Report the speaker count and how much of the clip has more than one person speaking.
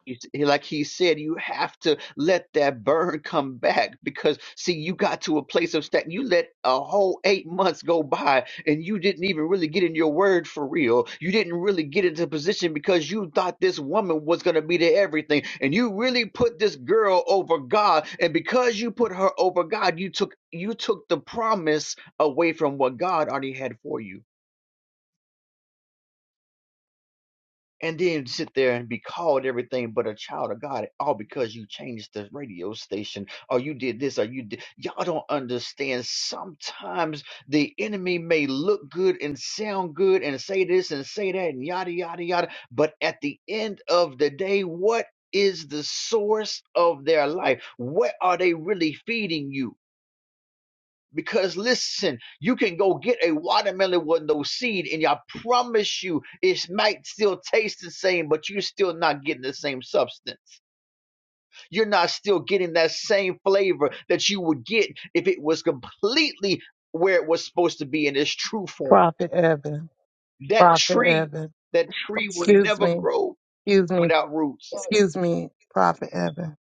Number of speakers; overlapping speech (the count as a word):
two, about 2%